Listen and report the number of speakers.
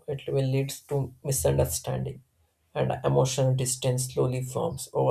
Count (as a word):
one